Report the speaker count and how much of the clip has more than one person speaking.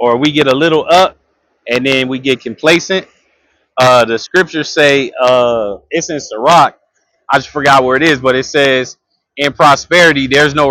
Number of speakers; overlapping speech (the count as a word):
one, no overlap